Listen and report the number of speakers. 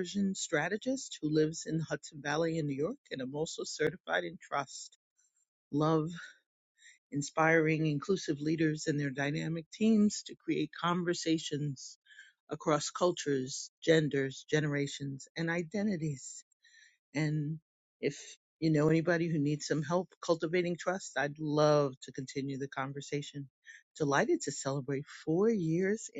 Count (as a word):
one